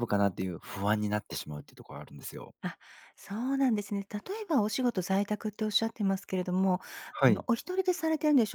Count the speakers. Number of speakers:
two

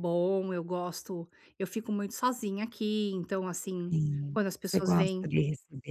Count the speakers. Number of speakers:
two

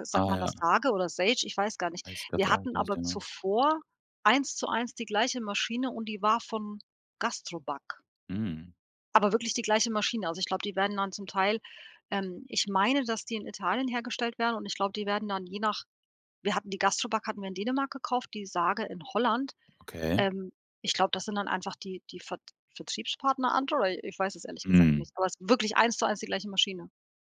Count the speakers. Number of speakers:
two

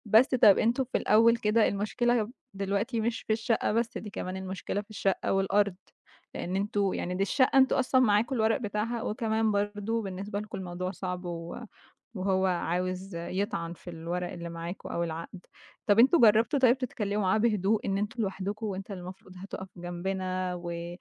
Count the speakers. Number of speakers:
one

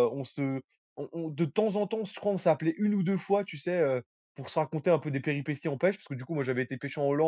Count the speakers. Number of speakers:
one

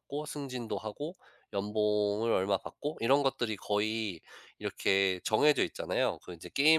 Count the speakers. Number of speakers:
one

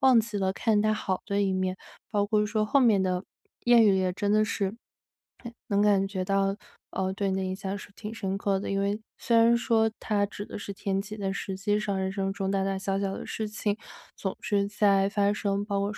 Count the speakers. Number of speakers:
one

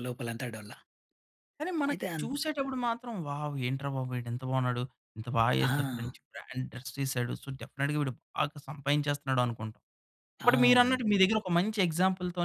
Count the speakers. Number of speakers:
two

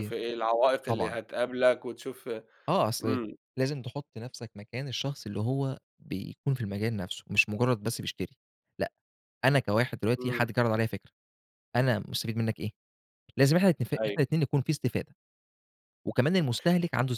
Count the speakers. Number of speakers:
two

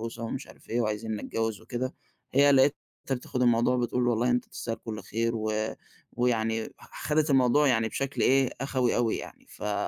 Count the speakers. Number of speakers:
one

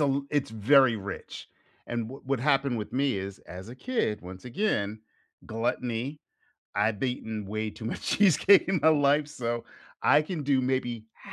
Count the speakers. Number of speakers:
one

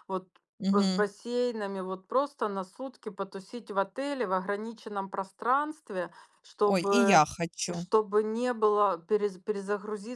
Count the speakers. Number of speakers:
two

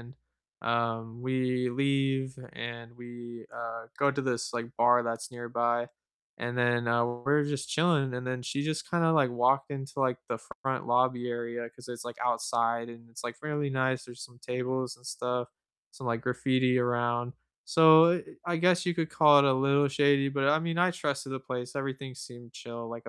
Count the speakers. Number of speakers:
one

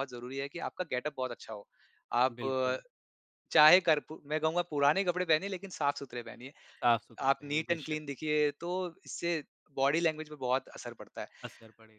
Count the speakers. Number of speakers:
two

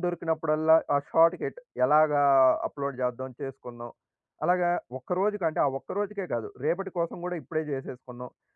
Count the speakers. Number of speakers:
one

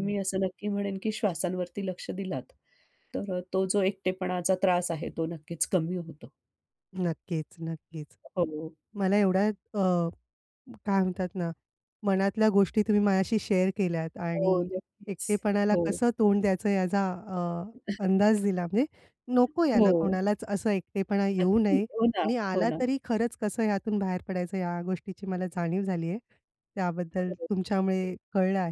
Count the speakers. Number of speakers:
two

